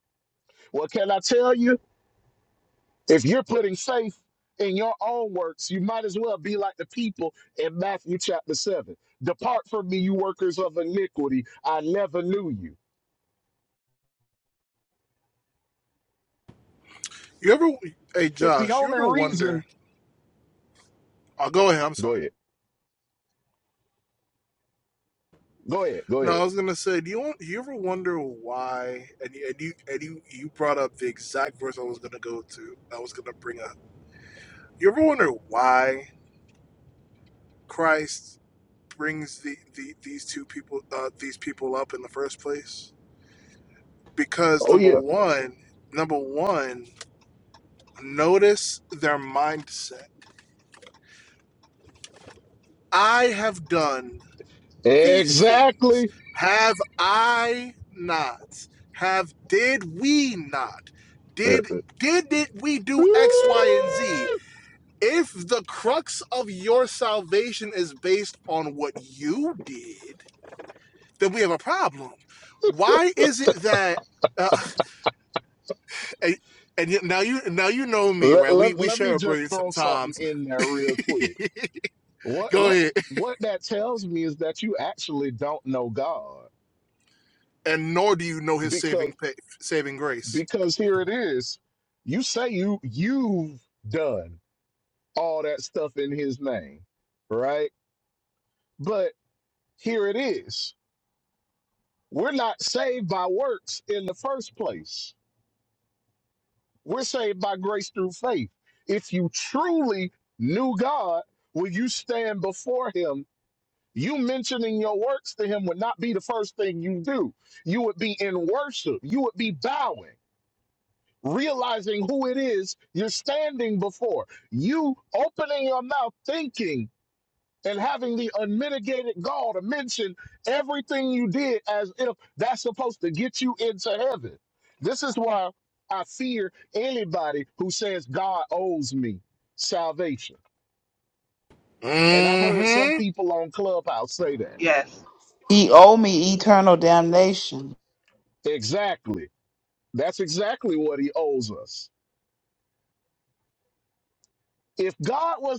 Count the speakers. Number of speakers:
three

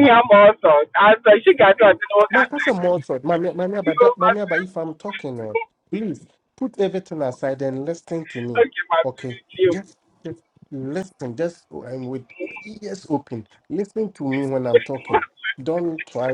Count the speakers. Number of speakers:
two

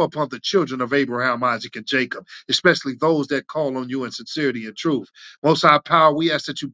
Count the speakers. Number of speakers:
one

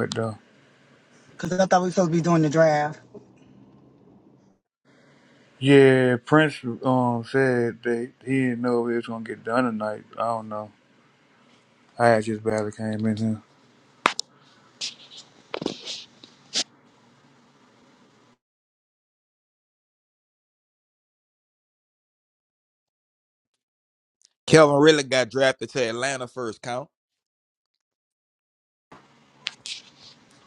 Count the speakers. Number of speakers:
three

